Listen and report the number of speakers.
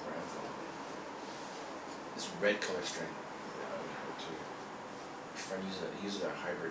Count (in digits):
1